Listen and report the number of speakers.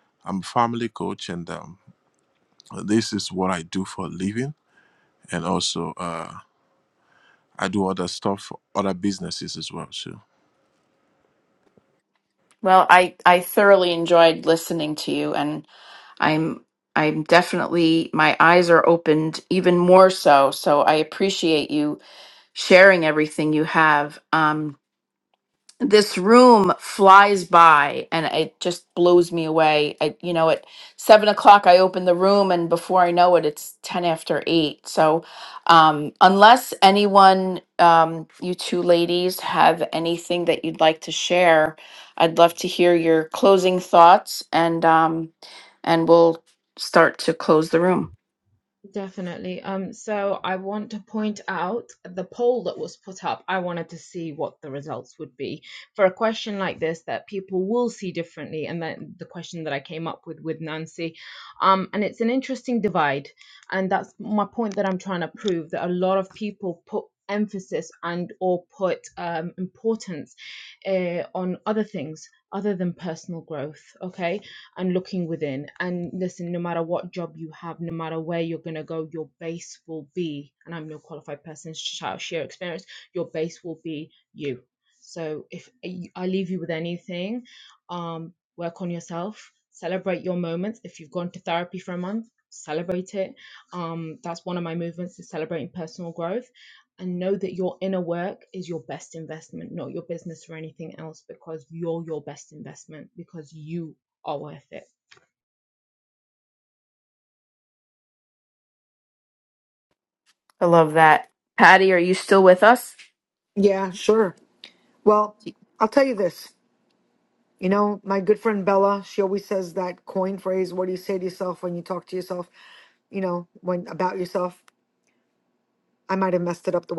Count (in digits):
4